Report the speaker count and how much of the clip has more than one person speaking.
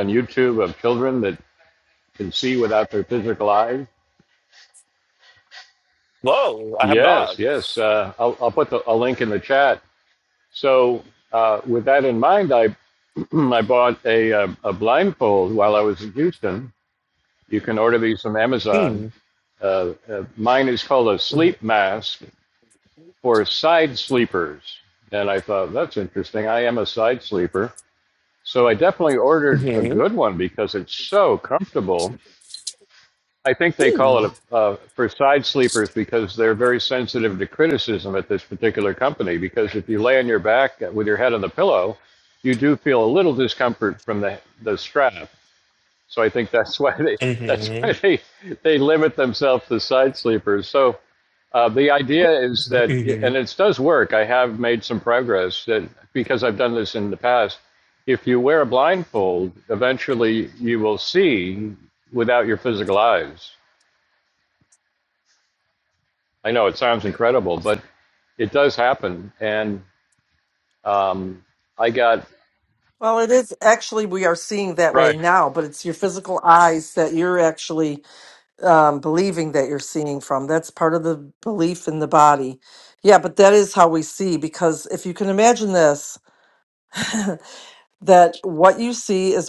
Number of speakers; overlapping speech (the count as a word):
three, about 3%